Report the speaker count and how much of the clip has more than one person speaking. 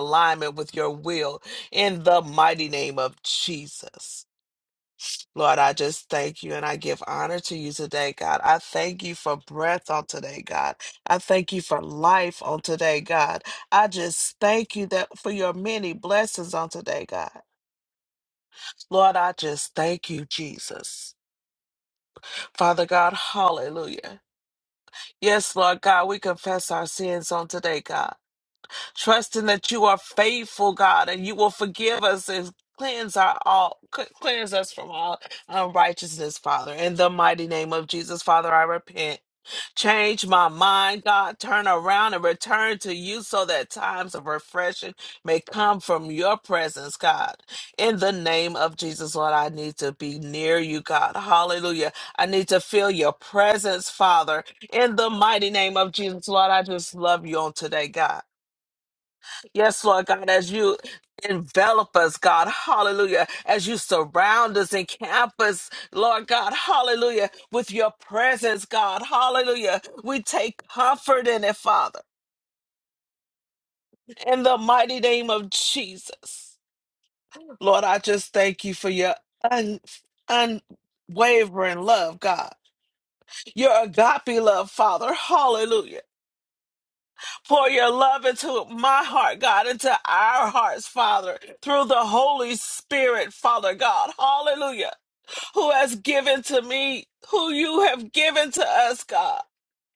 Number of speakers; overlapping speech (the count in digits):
1, no overlap